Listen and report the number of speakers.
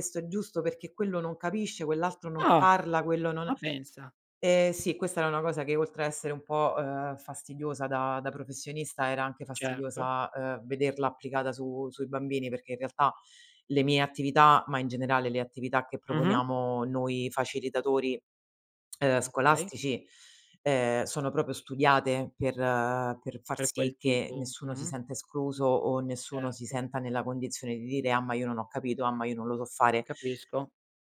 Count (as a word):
two